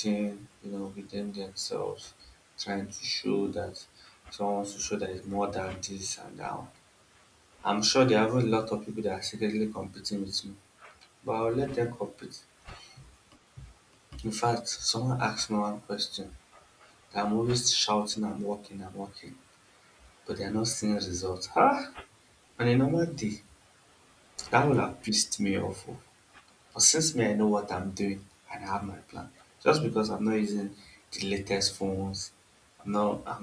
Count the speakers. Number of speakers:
one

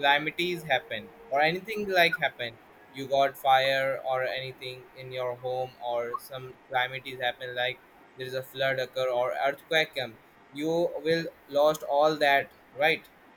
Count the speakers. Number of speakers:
one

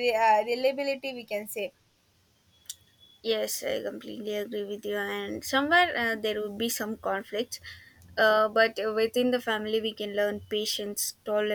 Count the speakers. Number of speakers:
two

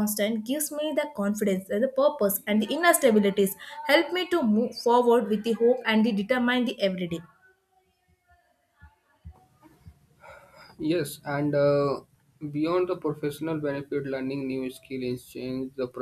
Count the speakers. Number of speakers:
two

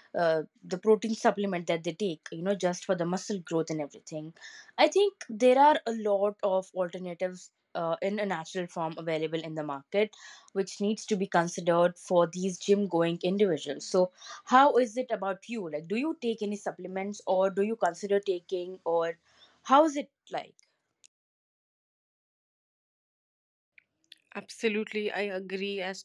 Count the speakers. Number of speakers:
two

